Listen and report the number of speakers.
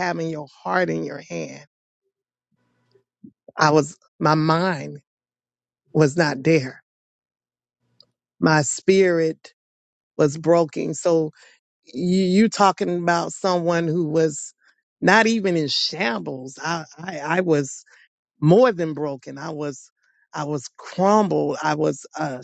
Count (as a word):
one